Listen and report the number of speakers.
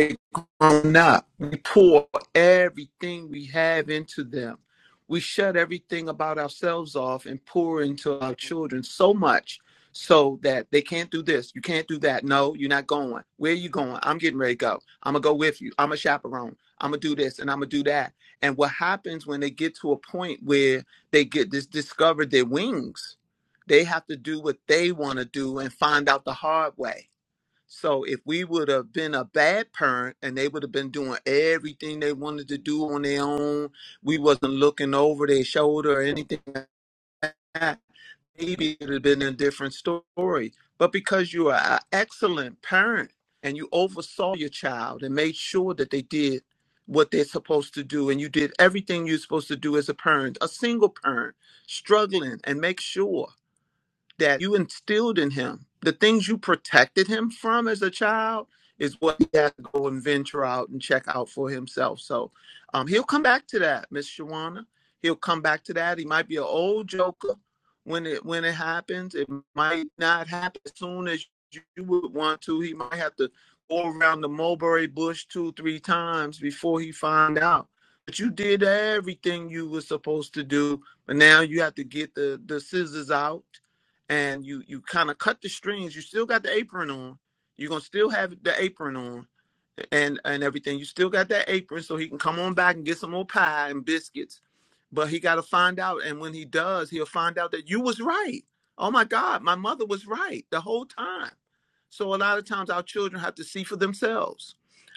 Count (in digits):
1